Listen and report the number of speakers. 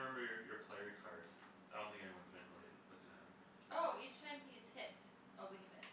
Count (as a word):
two